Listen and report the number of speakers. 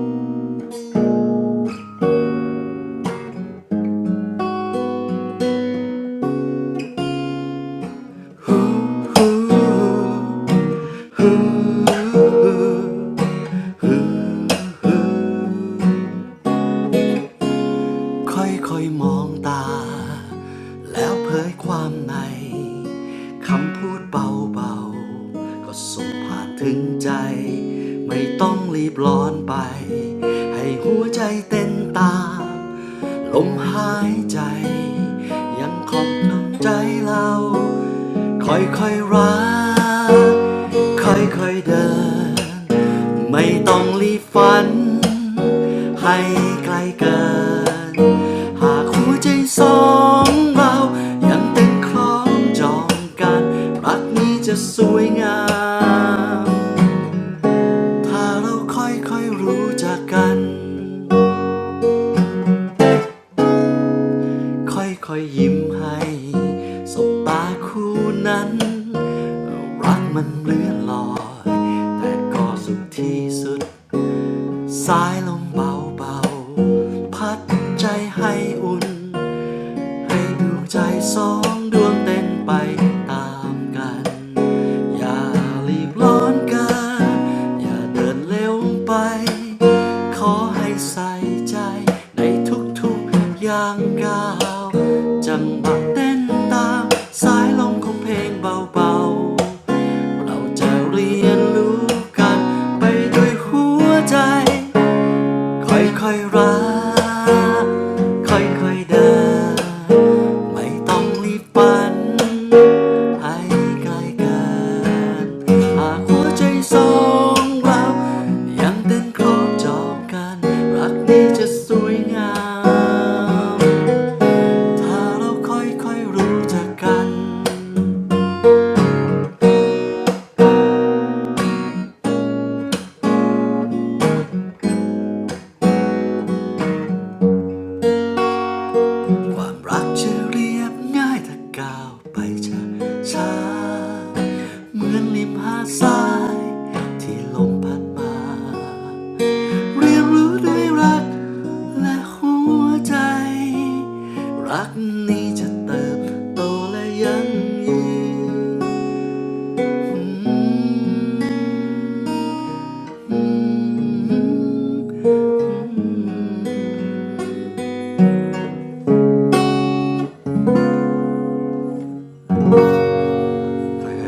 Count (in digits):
1